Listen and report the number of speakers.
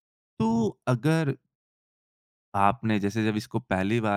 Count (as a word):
one